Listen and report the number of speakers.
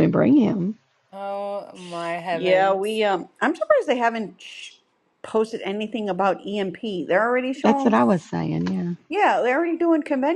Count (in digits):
3